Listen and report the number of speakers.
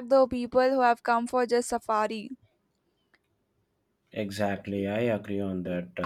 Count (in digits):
2